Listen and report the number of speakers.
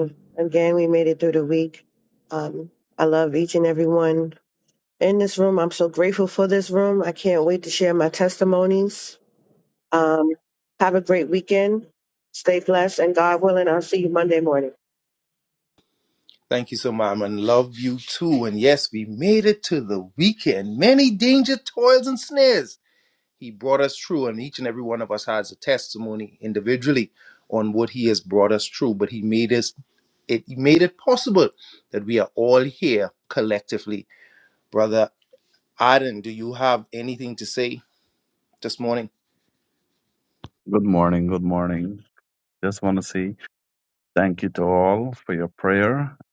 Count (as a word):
three